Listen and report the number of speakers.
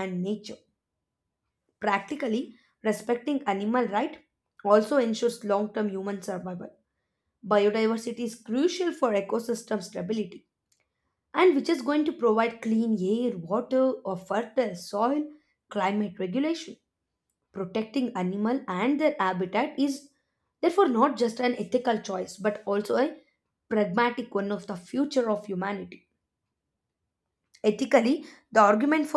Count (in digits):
1